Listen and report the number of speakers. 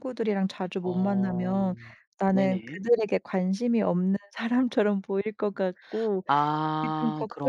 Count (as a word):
two